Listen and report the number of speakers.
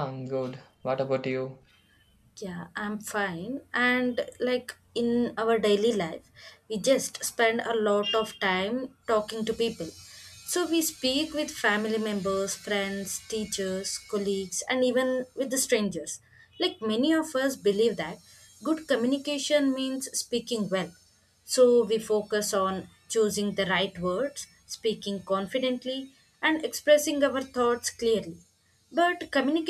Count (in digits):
2